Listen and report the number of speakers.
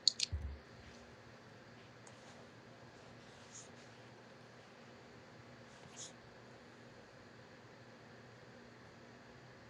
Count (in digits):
0